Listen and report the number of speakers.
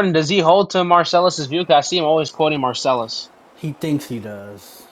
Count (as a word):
two